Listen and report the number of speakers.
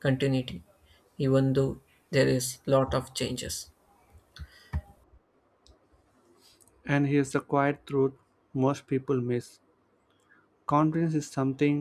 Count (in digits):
2